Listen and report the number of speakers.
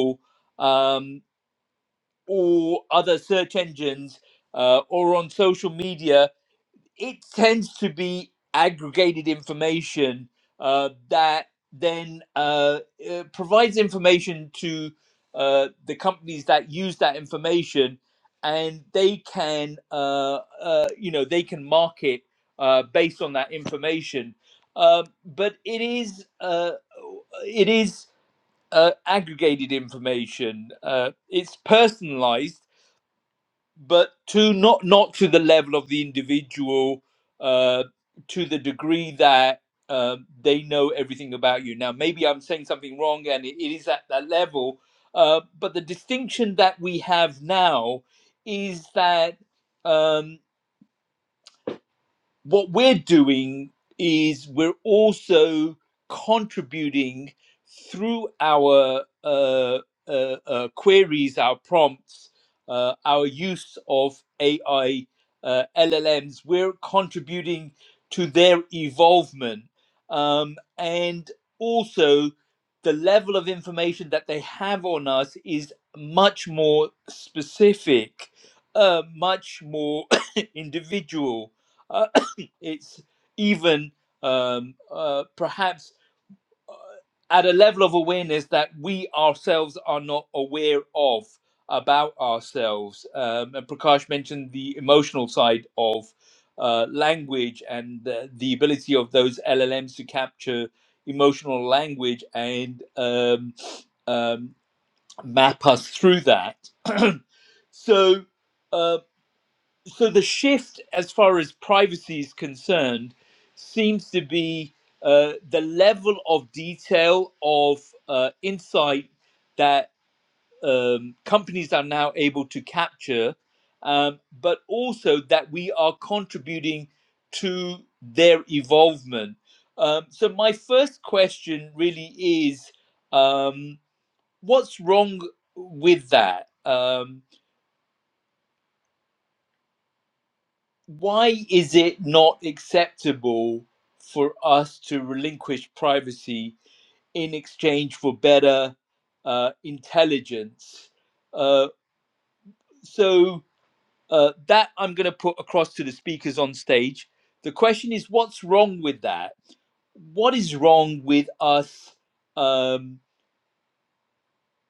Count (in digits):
1